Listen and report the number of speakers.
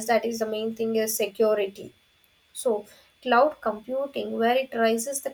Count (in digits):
1